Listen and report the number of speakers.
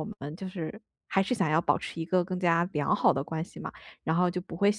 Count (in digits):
1